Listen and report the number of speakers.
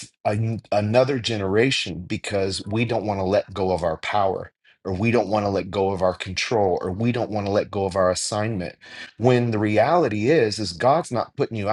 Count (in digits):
1